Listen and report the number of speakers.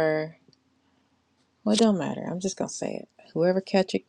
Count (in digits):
1